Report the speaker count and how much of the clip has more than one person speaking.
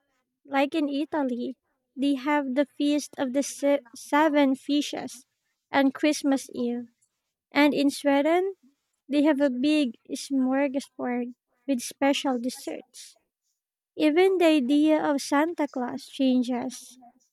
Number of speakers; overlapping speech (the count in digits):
1, no overlap